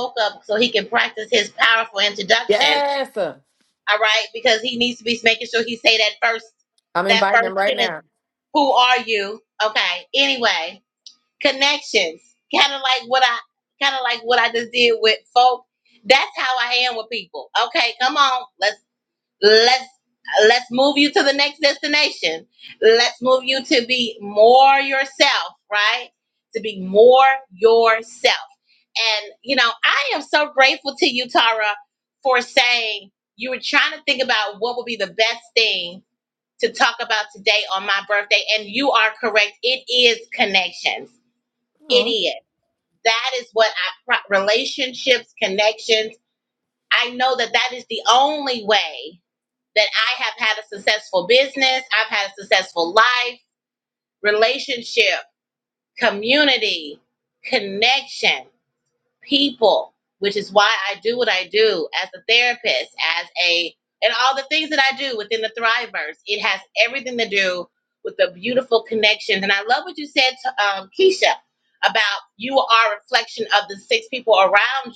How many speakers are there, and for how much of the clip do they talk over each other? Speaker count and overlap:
two, about 2%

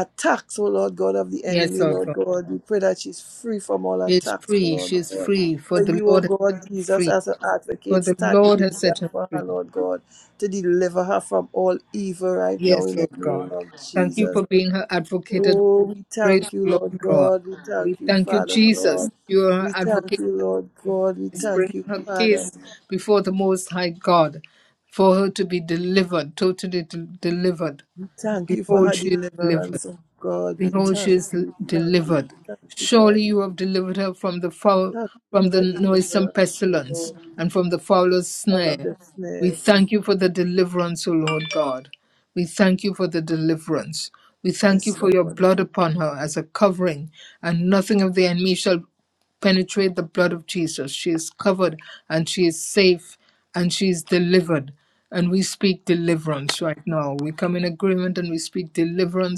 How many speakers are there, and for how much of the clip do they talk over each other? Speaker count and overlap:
two, about 28%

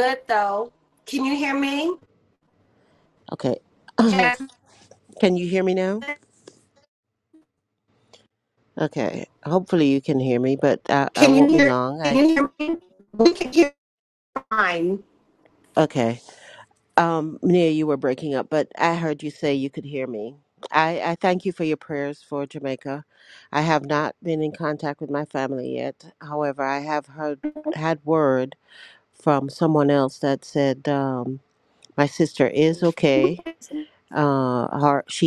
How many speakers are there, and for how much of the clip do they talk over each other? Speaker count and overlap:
two, about 4%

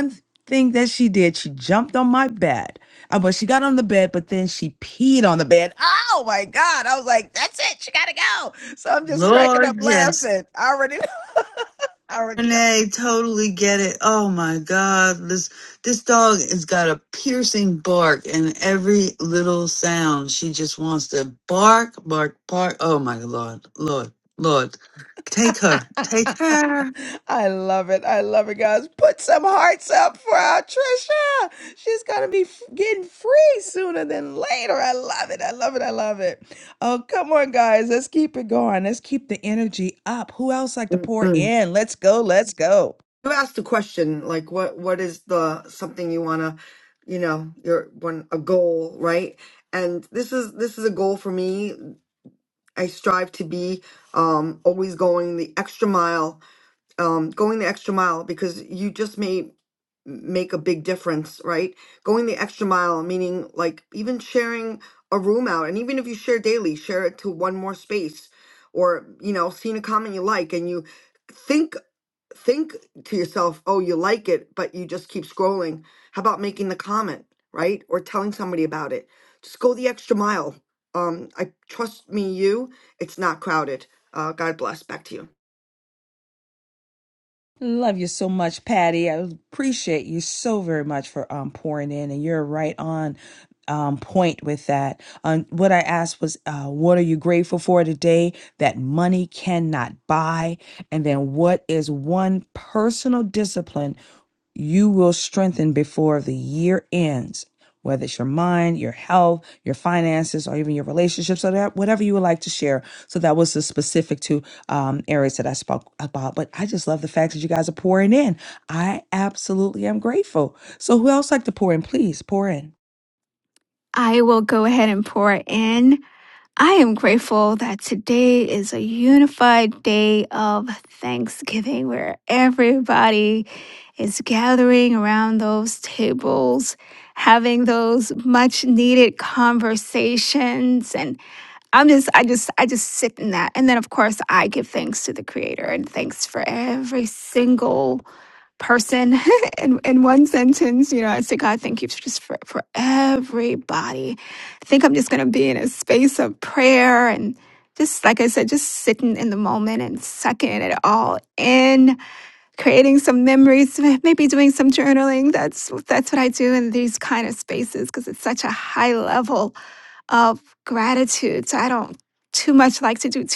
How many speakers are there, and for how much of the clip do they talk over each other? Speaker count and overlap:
four, about 1%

